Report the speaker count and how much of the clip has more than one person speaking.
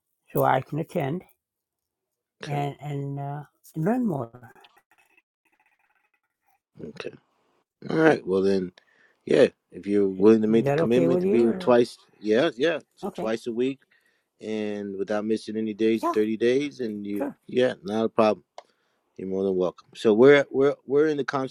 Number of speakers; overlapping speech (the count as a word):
two, about 9%